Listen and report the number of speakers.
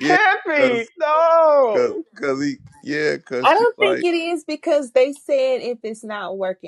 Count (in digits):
3